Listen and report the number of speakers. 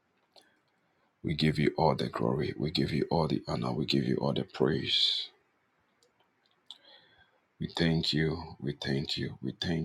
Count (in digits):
1